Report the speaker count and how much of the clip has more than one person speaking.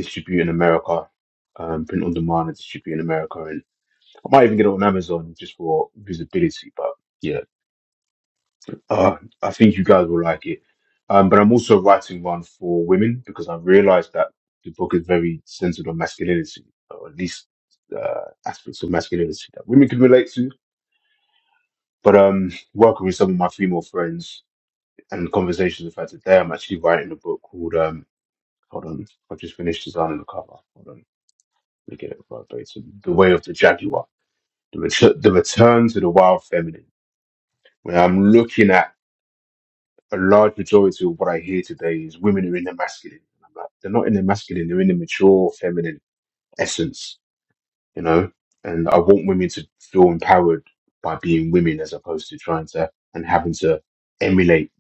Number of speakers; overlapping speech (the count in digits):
1, no overlap